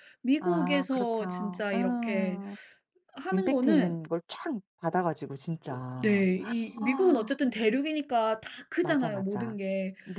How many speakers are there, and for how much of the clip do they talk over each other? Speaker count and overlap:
two, about 35%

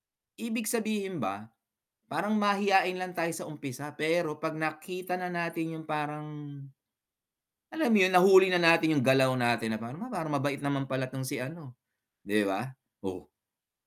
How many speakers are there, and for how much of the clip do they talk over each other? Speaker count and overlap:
one, no overlap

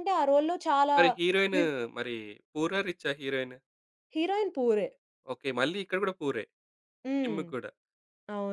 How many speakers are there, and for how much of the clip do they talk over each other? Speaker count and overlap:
two, about 5%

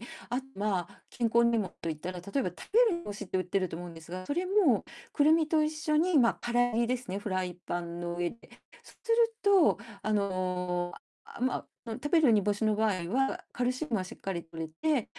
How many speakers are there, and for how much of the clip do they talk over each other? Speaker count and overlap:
one, no overlap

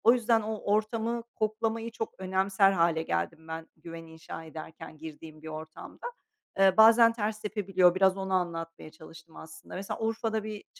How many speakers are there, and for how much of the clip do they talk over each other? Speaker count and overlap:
one, no overlap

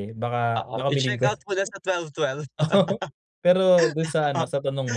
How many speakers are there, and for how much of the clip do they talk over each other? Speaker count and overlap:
two, about 16%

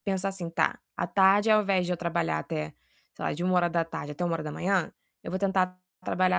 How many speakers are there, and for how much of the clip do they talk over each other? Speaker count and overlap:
one, no overlap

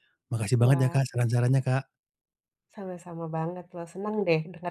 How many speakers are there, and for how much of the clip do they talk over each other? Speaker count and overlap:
two, about 21%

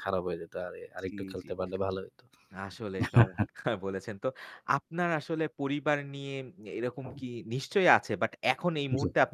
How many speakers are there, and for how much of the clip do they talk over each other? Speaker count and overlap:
two, about 6%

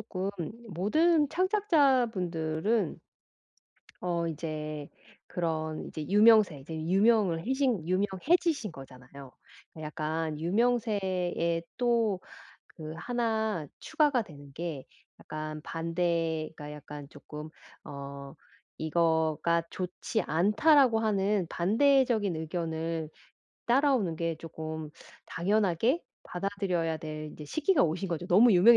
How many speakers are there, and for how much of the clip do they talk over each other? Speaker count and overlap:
one, no overlap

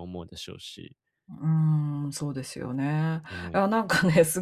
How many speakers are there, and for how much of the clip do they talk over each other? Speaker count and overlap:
two, about 7%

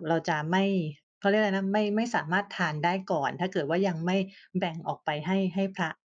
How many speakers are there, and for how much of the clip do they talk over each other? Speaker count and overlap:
one, no overlap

